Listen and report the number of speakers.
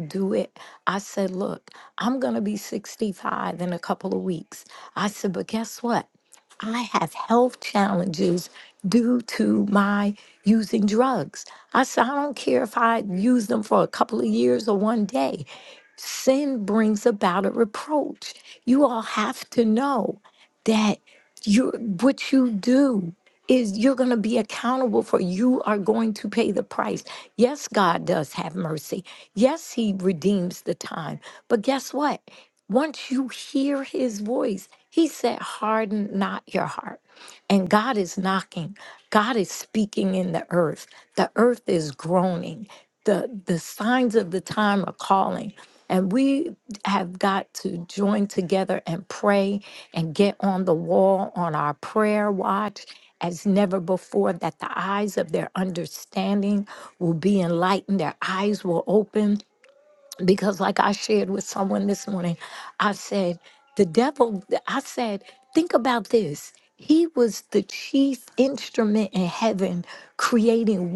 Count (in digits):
1